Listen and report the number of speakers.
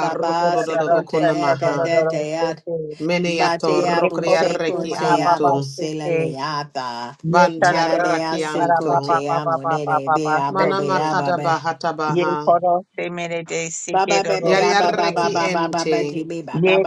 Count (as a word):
three